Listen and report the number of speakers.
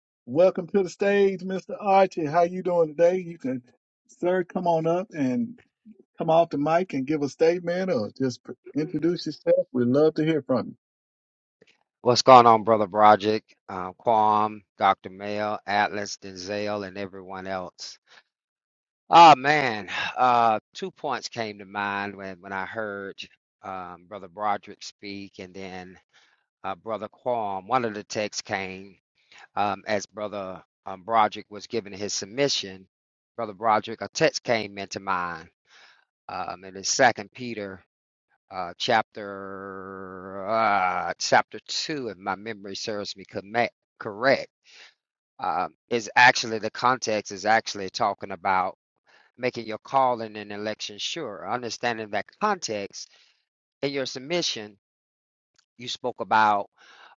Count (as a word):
two